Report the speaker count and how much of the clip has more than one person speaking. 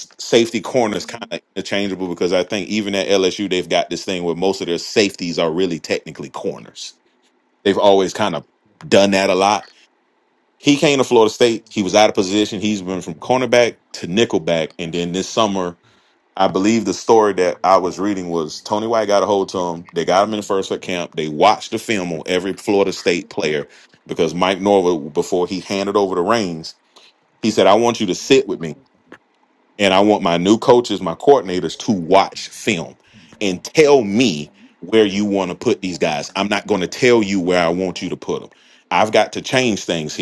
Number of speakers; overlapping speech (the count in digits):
1, no overlap